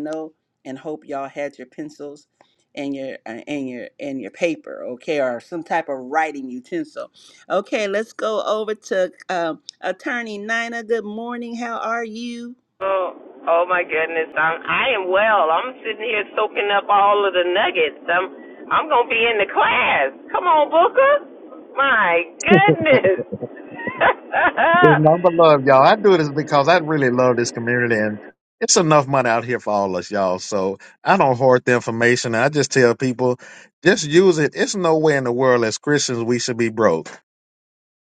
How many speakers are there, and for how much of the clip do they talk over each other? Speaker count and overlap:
3, no overlap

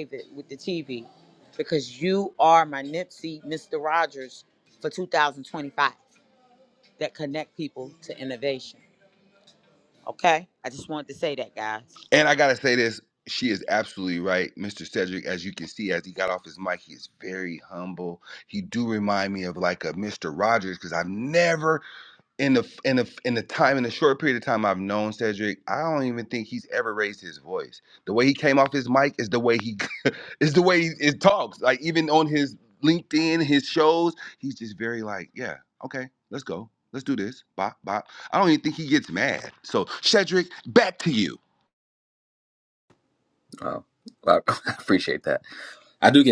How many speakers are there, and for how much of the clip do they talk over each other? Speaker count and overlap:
3, no overlap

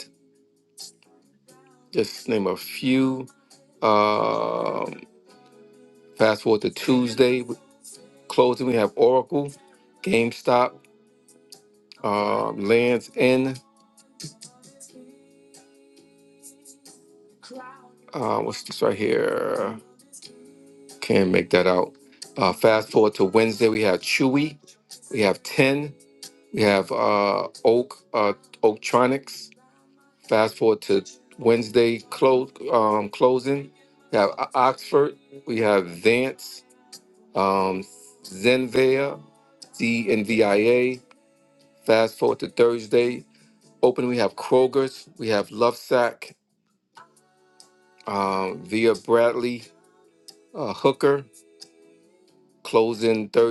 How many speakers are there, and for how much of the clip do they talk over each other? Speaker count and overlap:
1, no overlap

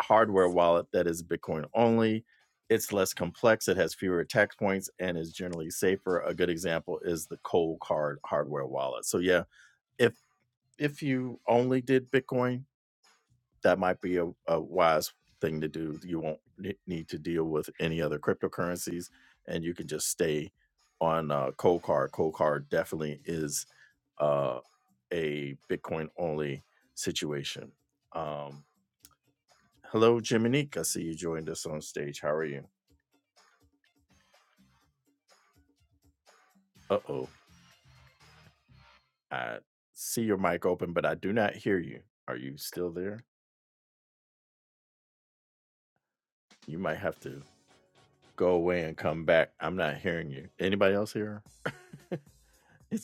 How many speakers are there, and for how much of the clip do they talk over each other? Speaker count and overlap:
1, no overlap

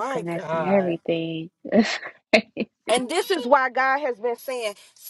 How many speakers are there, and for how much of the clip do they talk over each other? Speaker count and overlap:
2, about 22%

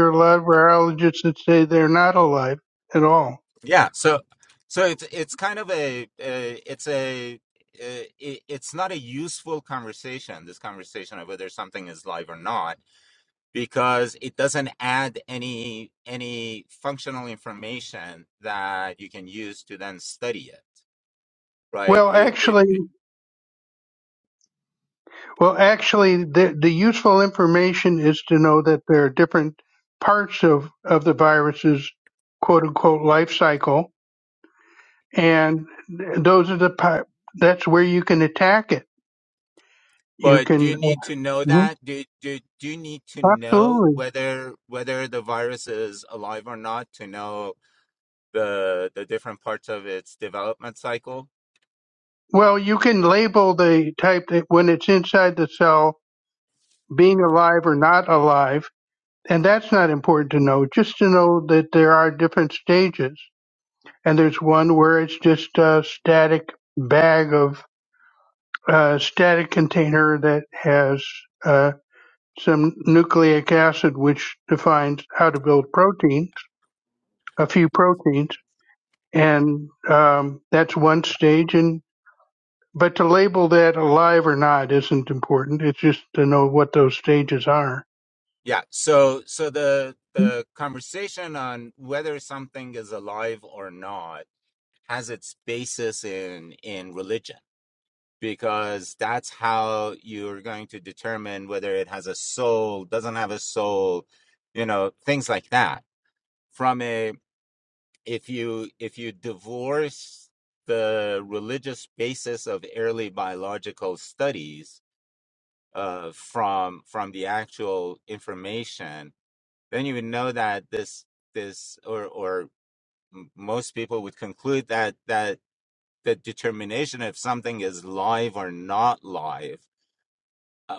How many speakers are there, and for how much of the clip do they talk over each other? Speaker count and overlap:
2, about 2%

